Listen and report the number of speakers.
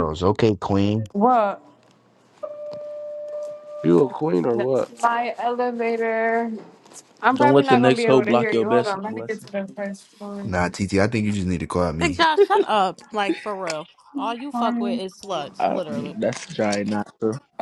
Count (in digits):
5